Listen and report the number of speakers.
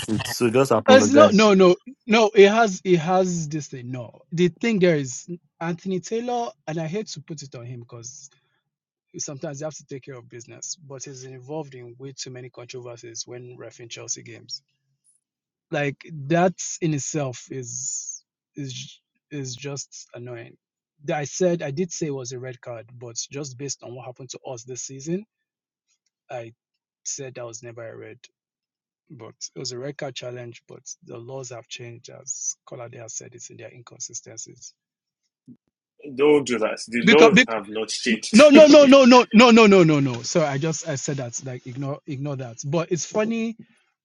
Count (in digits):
3